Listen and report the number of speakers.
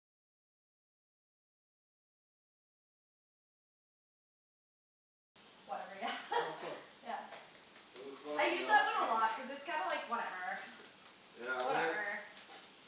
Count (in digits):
3